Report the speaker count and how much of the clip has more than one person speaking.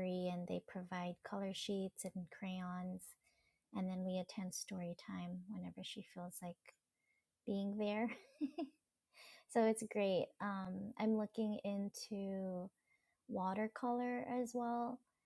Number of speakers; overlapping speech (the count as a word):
one, no overlap